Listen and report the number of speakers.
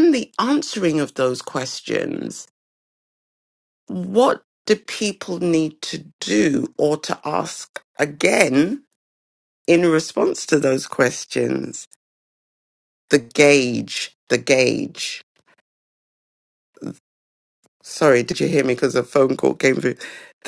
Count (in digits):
1